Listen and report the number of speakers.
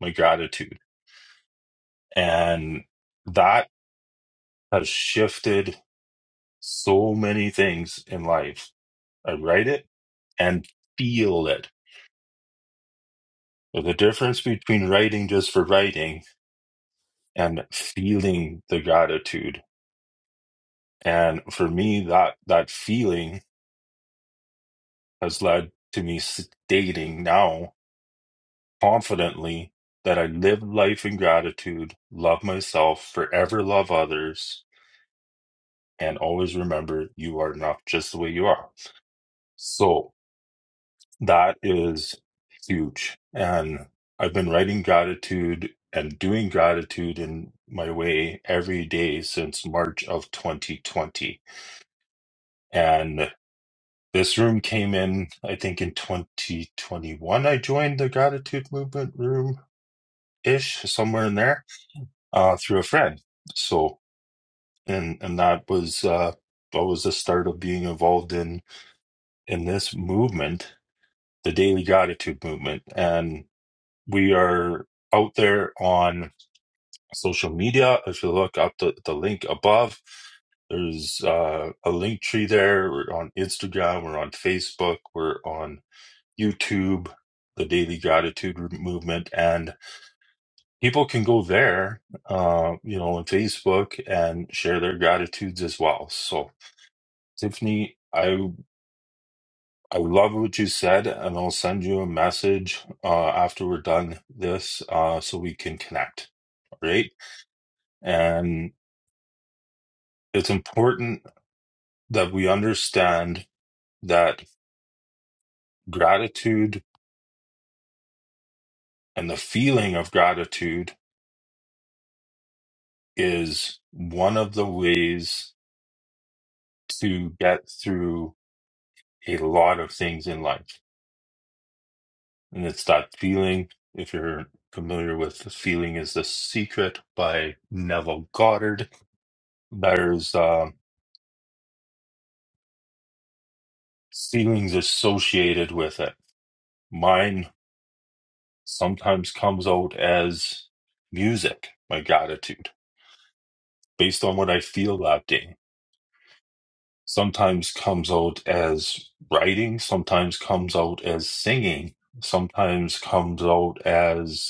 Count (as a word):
one